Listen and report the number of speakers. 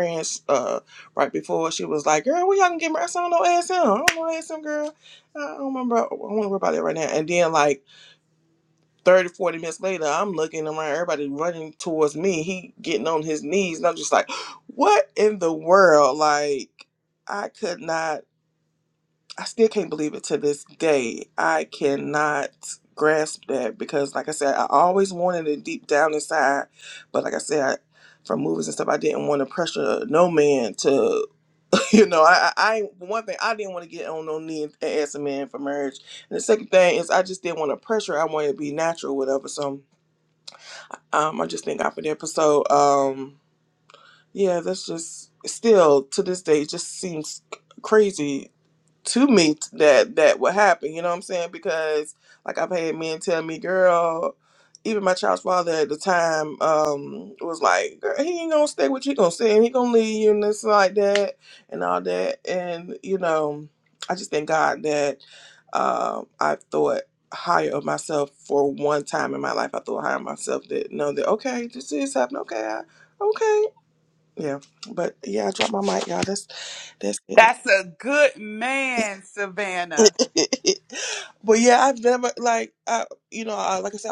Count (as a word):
two